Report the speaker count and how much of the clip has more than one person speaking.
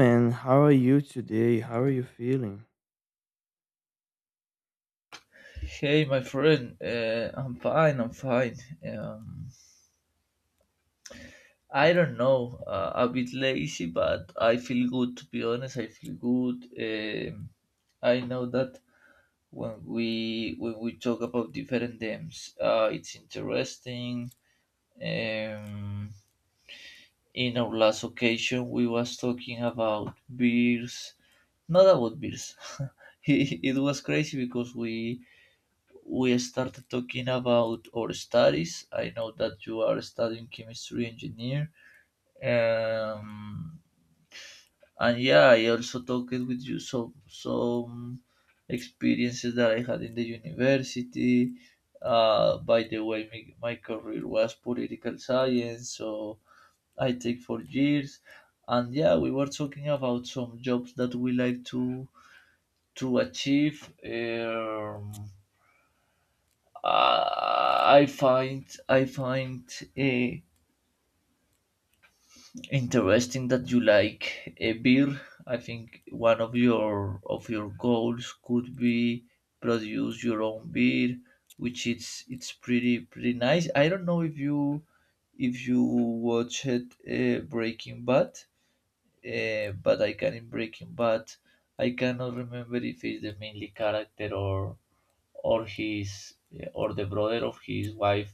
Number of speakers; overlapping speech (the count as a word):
two, no overlap